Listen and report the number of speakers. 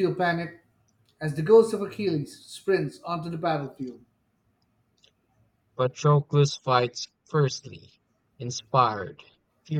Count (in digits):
2